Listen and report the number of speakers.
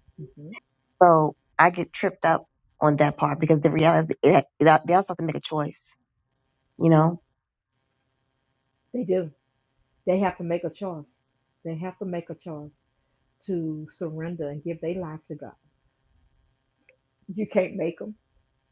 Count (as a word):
two